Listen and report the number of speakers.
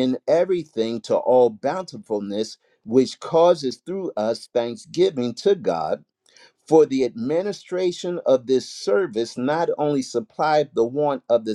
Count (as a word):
one